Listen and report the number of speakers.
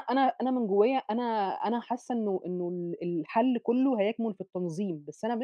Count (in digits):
1